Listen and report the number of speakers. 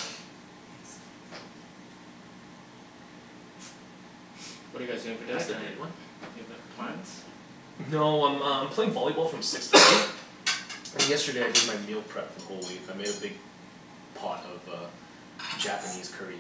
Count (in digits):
2